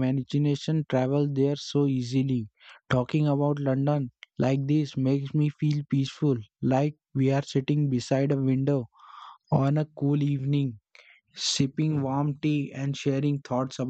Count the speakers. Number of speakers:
1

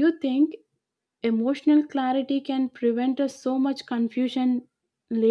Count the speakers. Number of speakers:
1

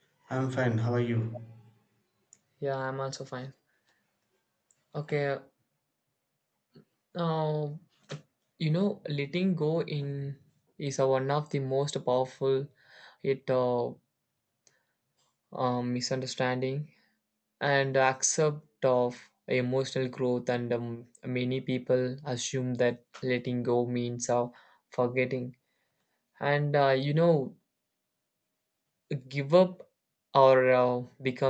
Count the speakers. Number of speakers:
2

